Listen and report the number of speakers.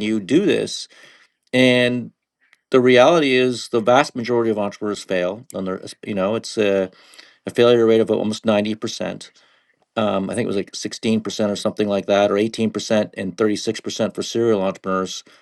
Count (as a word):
one